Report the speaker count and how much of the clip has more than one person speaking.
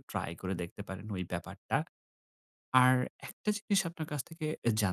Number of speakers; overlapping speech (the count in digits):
1, no overlap